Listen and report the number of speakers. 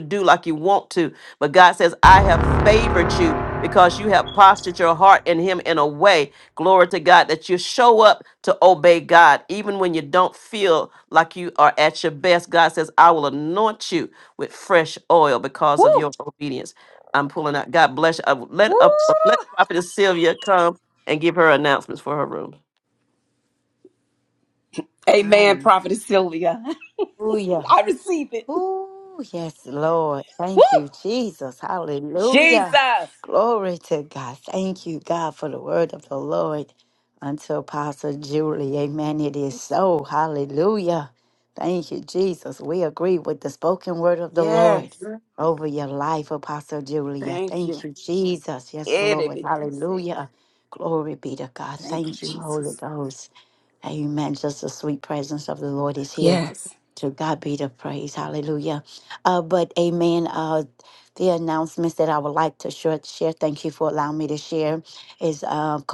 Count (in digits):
3